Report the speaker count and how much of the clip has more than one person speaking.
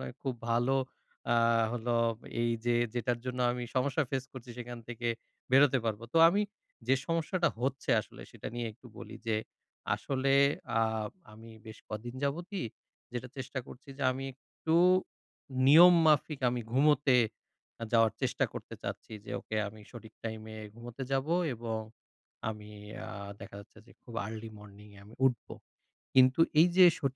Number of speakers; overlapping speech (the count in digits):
1, no overlap